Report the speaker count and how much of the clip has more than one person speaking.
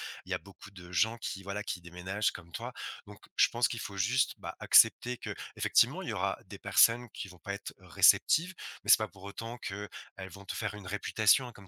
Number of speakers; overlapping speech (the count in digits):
1, no overlap